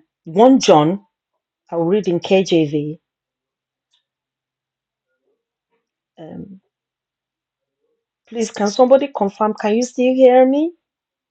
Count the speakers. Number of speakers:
one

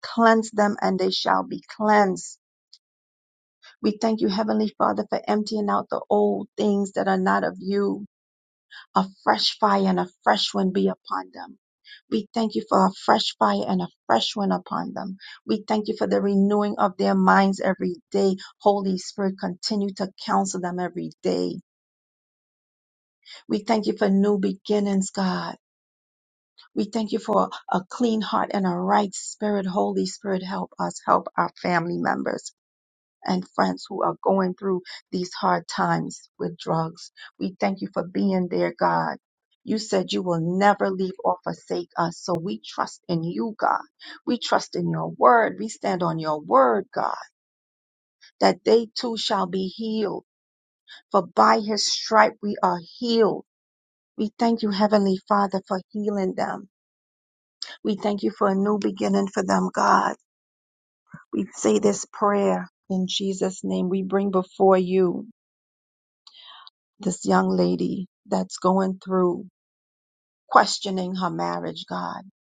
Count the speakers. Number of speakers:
one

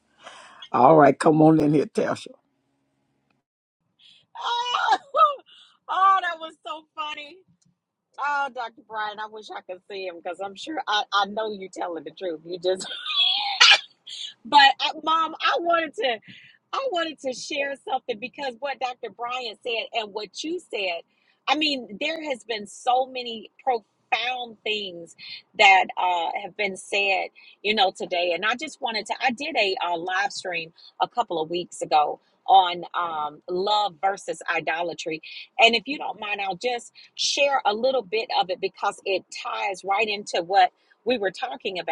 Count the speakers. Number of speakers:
two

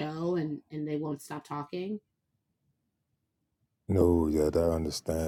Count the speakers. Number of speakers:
two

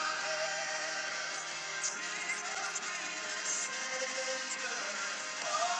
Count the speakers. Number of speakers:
zero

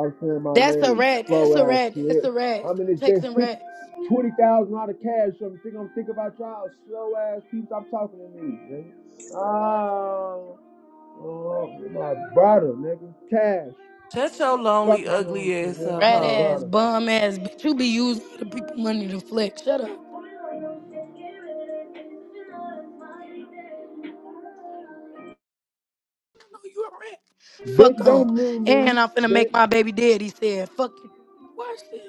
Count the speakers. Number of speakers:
three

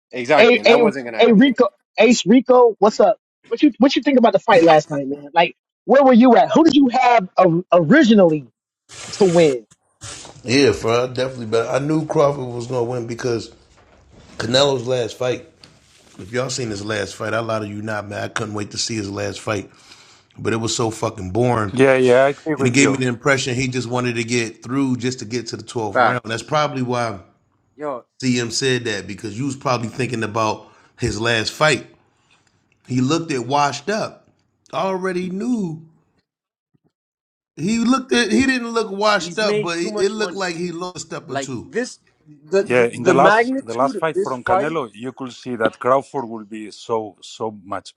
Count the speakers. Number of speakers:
four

